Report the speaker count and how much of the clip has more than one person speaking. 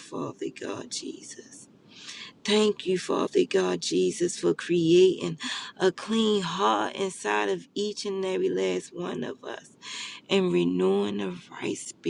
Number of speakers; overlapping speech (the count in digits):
1, no overlap